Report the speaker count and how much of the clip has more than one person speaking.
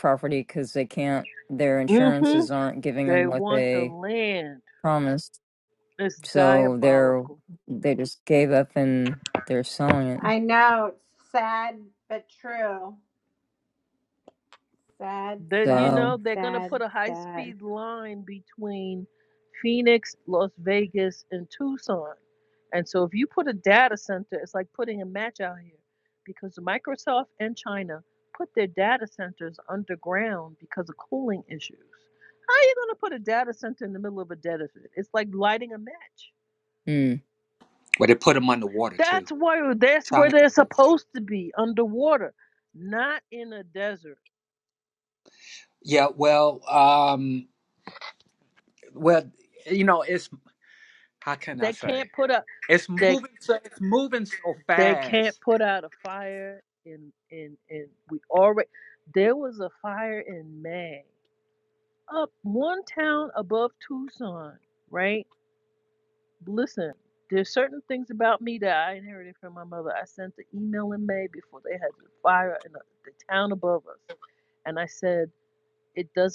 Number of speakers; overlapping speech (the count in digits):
4, about 8%